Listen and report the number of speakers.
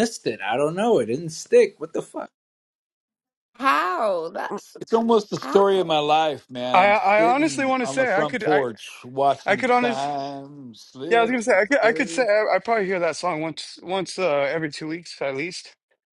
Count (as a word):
four